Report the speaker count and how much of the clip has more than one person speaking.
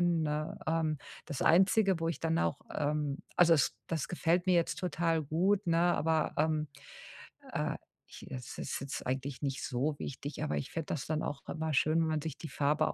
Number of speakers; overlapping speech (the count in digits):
1, no overlap